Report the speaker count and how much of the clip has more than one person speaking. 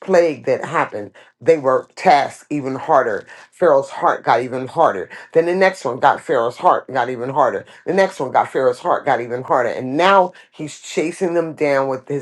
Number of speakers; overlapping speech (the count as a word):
one, no overlap